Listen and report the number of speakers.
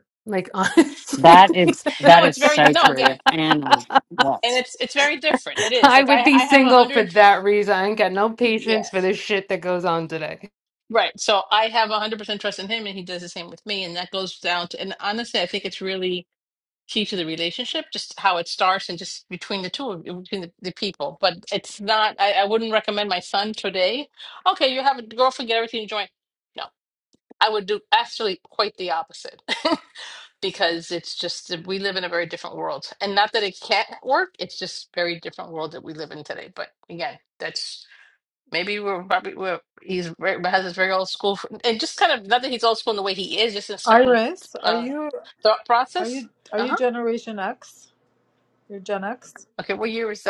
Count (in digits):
4